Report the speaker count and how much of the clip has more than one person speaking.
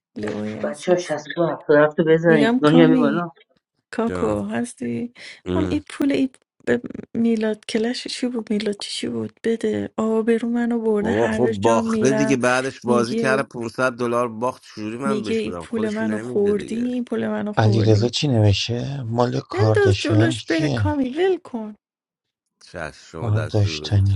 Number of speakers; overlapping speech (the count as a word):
four, about 36%